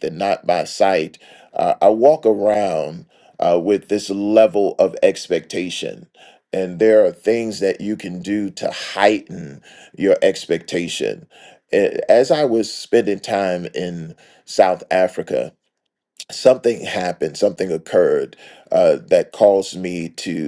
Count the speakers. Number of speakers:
one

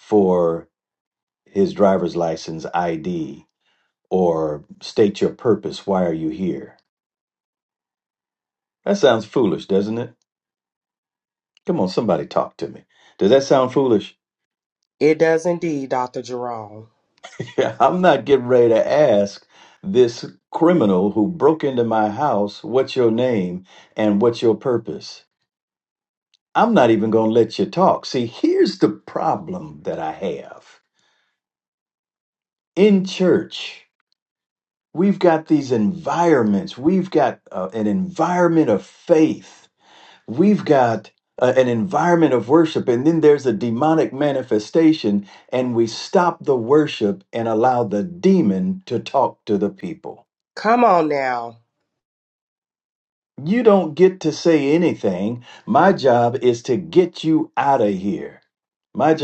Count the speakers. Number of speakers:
two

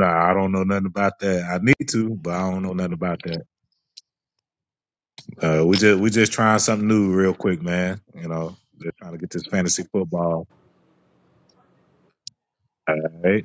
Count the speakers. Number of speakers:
one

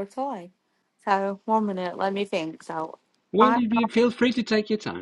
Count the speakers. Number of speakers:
two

